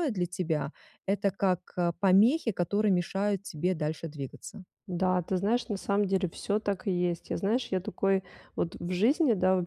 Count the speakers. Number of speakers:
2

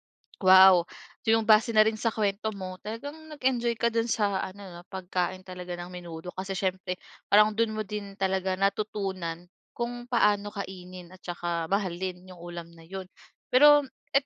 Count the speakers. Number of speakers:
1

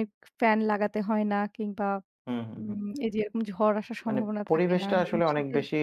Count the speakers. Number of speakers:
2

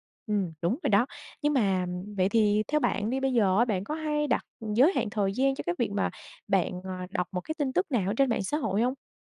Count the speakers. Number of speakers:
1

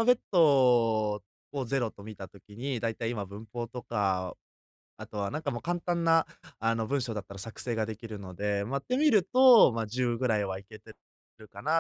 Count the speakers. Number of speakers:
1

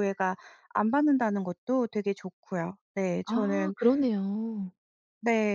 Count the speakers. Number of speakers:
2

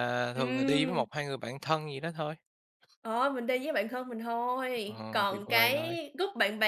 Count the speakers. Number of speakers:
2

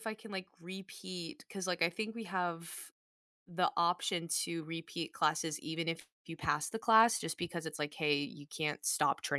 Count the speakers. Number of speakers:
1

